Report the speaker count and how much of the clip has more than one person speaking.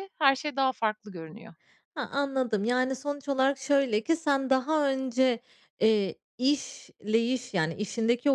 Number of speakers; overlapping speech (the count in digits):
2, no overlap